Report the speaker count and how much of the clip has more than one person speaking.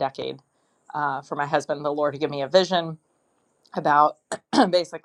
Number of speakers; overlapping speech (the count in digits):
1, no overlap